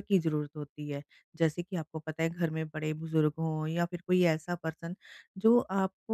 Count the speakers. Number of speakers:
one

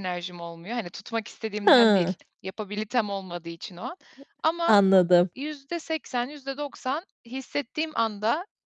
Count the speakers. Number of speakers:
two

